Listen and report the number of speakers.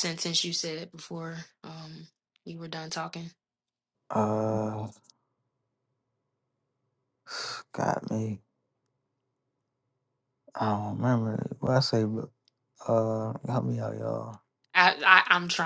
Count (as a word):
two